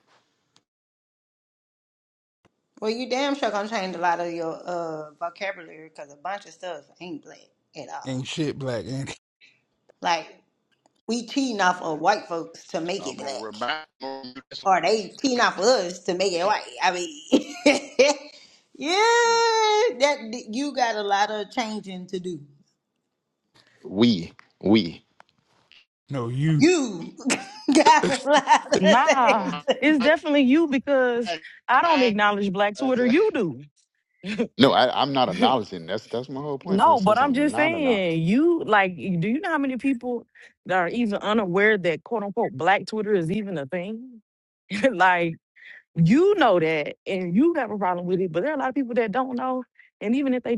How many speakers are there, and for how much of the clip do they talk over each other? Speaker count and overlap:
5, about 8%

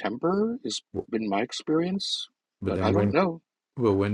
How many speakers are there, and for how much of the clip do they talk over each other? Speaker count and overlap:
2, about 12%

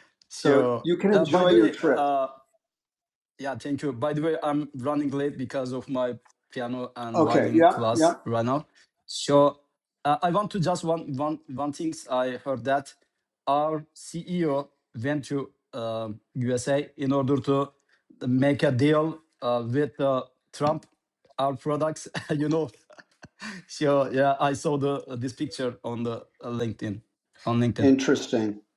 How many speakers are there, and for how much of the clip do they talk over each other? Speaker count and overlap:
2, about 10%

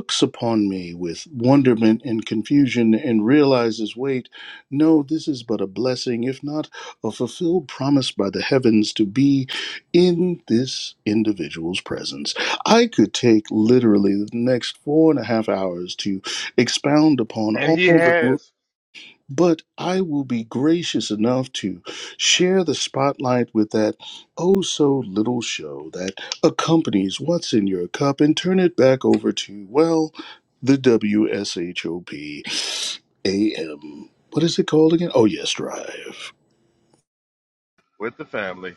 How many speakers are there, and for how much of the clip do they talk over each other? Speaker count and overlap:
2, about 2%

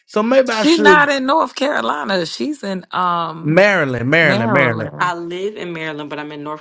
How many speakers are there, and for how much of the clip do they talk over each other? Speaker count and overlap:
3, about 22%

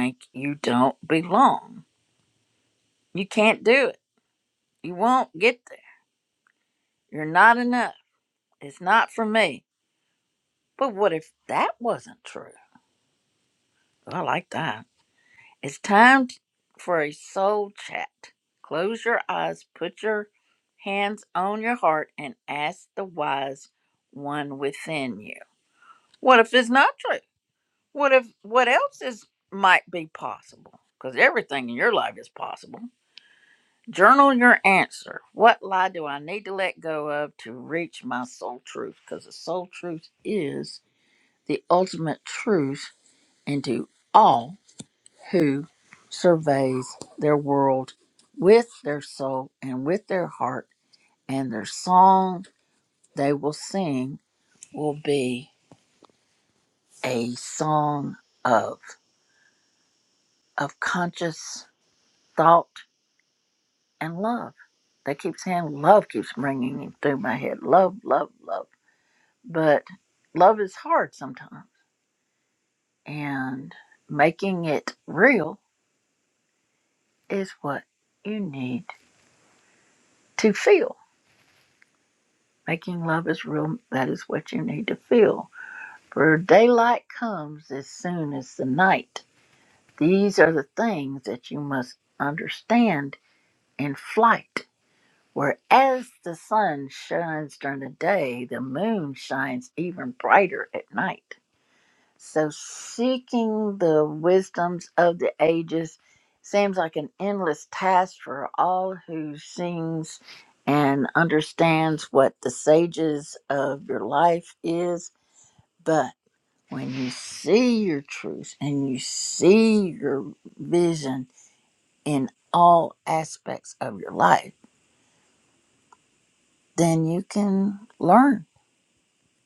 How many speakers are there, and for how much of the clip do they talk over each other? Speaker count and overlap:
1, no overlap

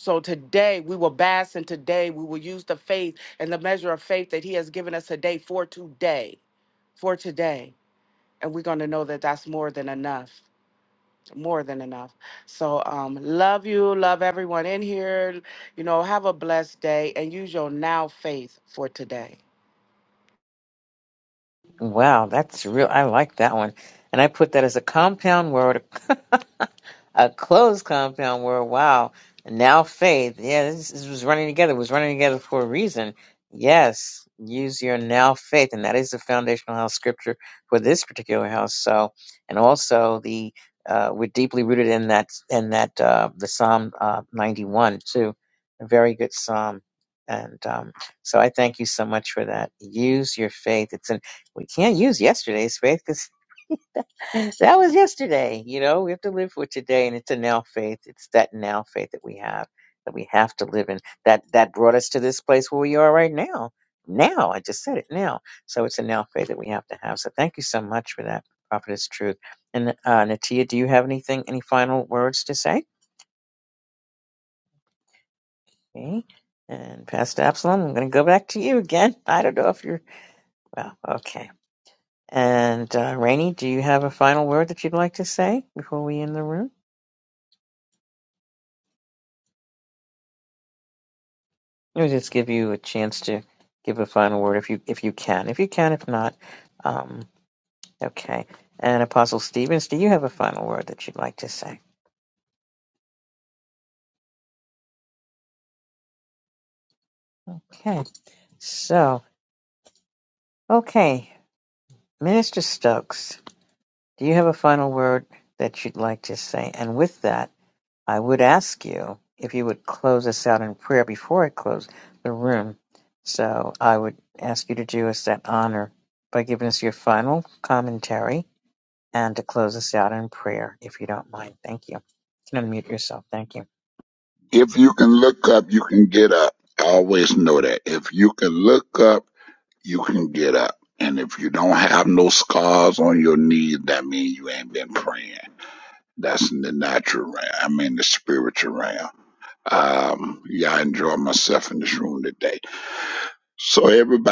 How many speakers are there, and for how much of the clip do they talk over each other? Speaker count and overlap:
3, no overlap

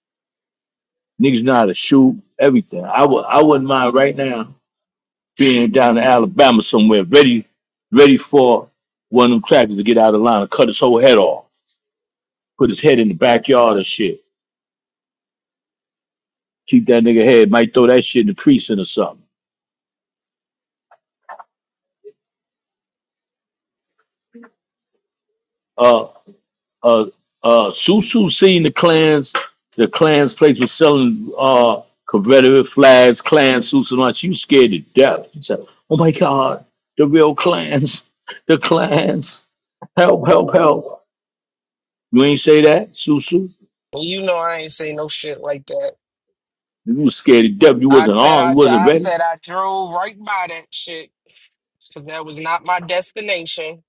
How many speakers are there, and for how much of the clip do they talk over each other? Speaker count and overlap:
2, about 2%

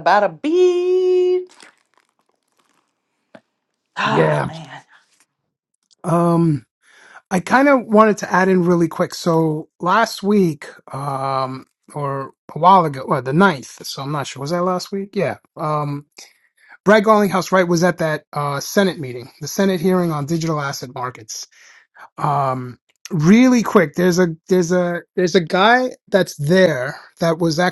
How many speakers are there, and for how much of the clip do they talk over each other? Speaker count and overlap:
2, about 2%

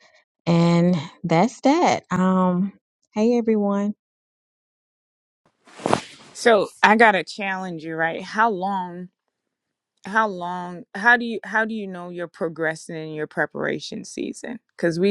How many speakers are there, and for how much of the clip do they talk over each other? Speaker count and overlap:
2, no overlap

